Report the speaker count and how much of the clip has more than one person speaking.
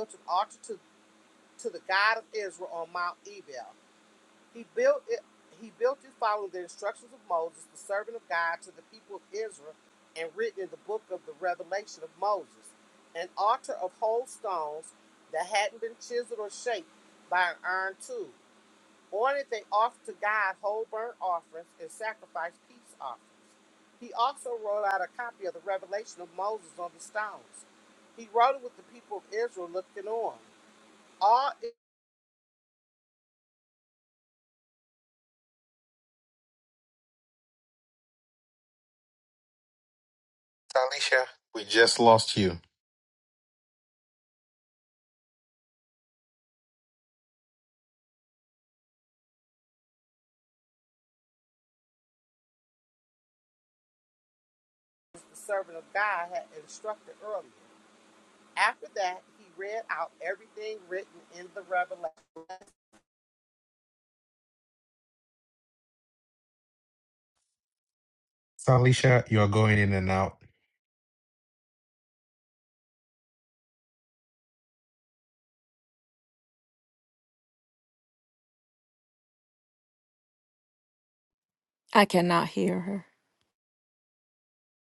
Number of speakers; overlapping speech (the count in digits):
3, no overlap